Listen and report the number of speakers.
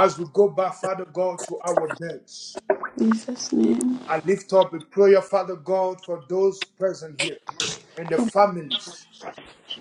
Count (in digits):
2